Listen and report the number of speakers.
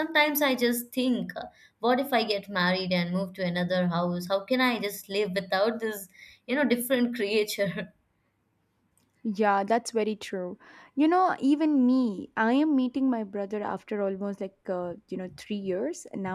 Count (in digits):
2